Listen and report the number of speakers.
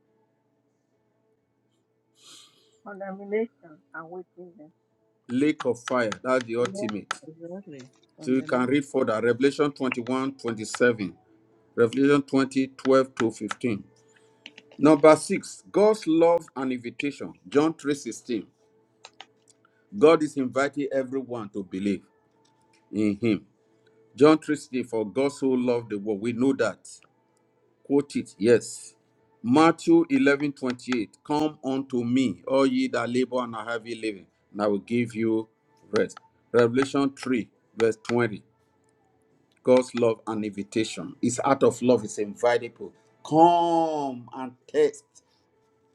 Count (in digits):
3